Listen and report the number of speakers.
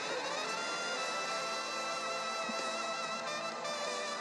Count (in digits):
0